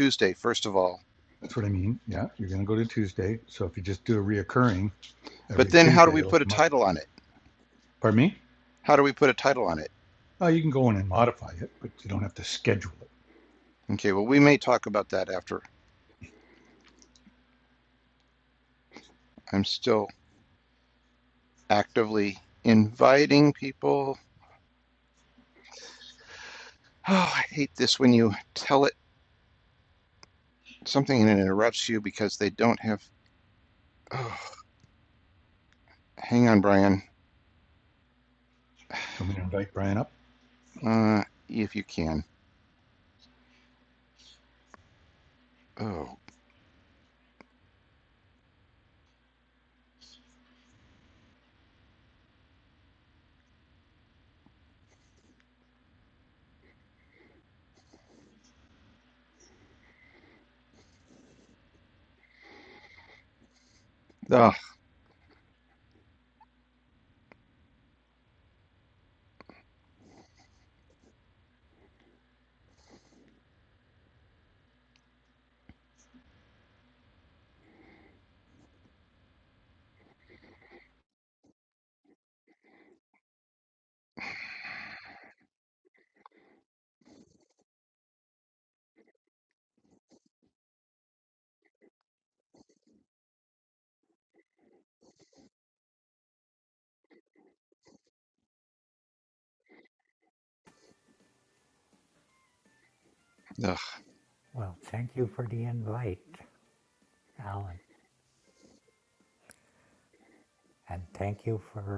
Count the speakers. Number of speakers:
three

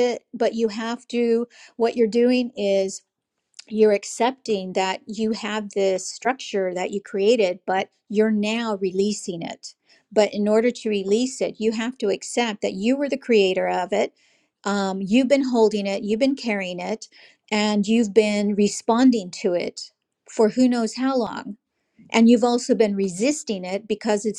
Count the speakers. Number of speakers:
one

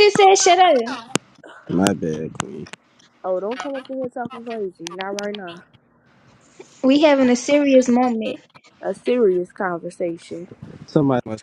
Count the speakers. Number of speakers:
three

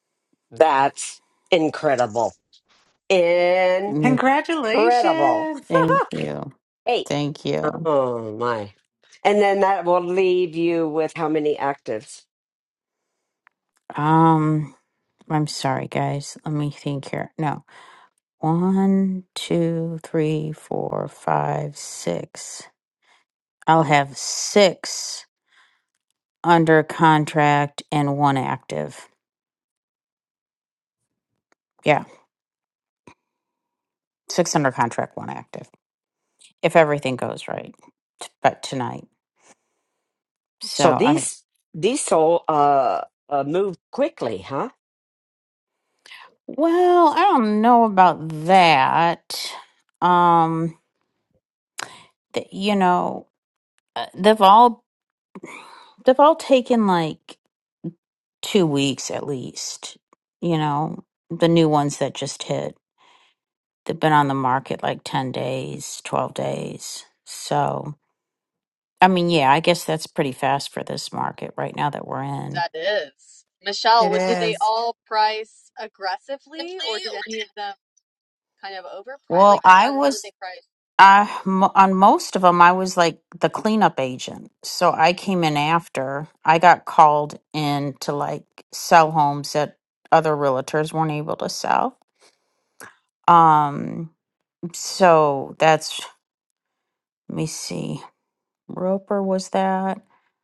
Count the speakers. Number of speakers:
four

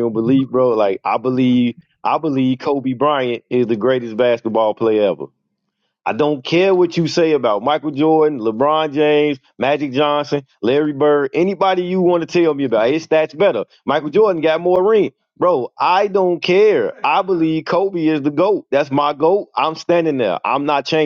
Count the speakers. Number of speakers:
one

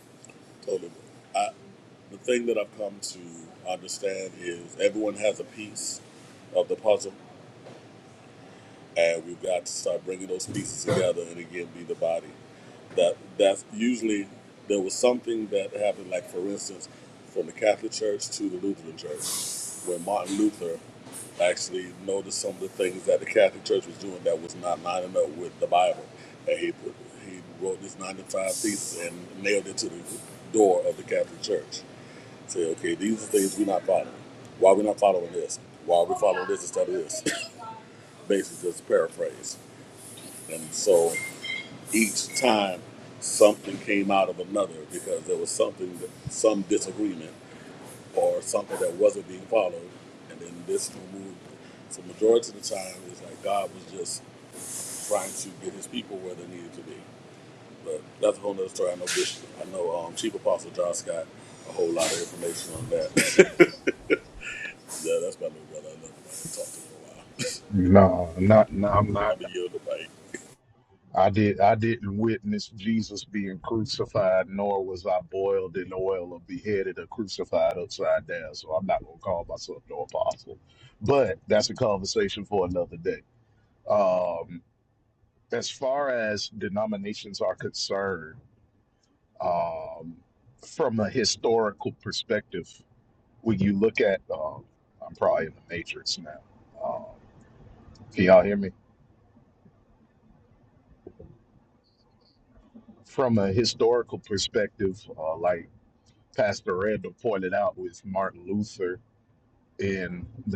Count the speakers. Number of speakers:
two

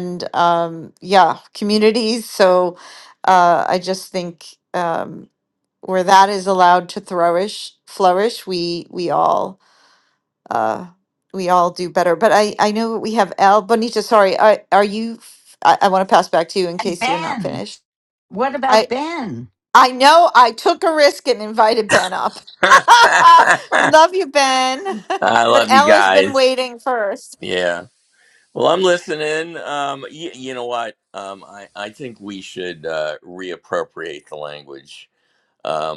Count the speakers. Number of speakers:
three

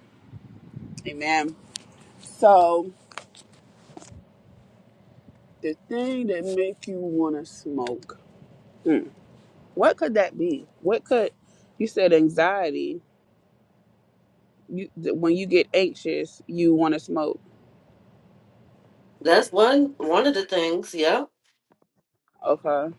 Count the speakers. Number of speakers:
two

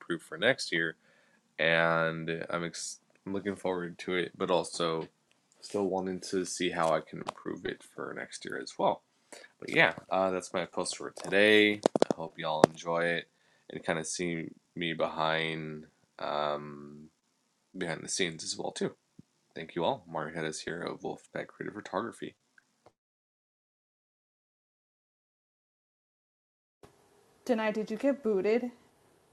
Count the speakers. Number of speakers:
two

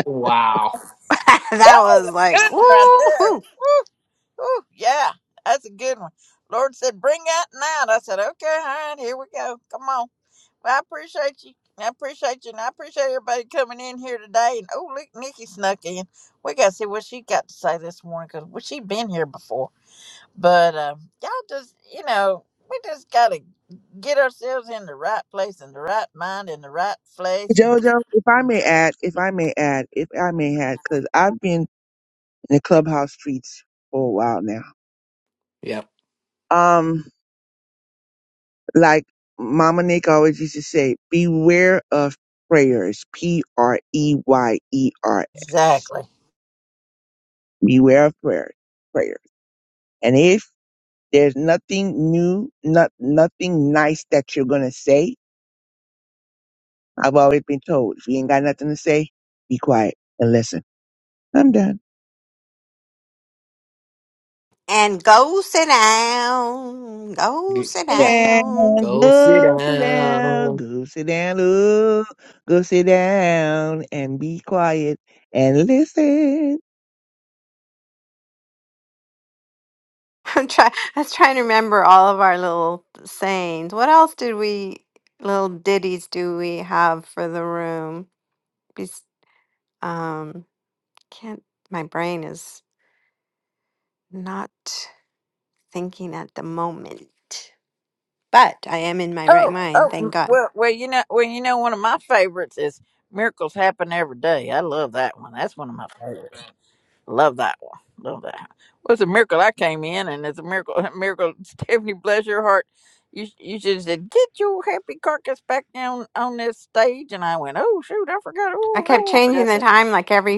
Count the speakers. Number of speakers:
four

